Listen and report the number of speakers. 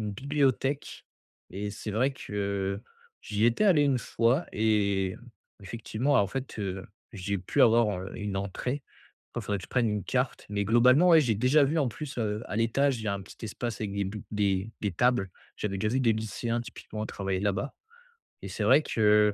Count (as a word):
one